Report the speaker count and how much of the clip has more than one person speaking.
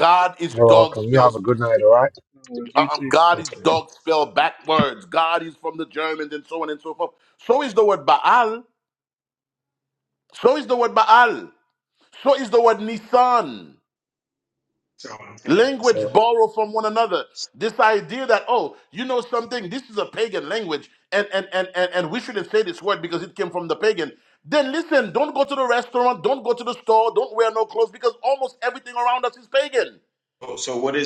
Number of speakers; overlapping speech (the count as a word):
three, about 6%